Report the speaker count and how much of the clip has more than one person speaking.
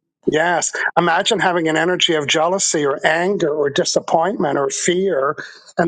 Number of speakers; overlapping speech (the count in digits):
1, no overlap